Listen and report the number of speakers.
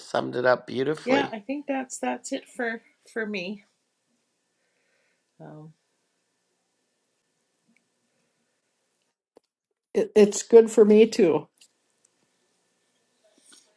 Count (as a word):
three